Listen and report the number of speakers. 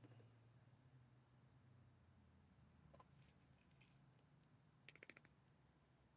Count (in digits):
0